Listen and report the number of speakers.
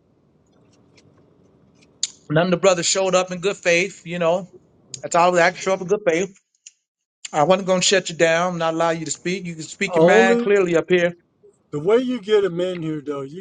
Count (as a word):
two